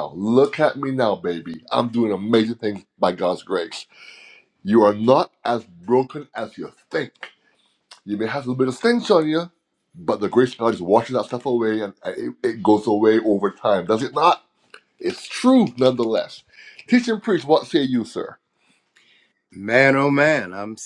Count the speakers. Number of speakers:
two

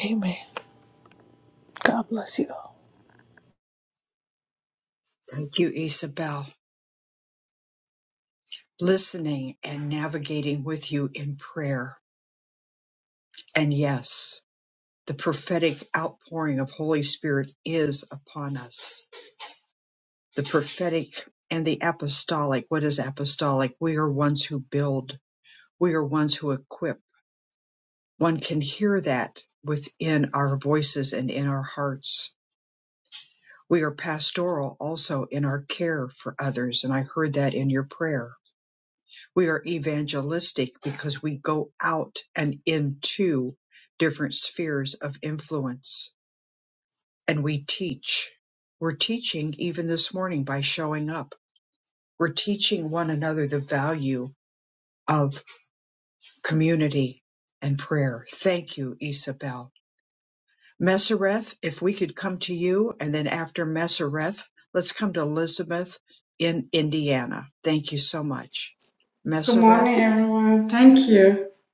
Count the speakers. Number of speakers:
three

